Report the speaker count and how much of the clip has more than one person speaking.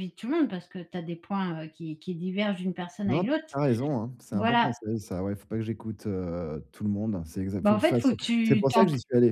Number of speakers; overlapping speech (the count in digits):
2, about 21%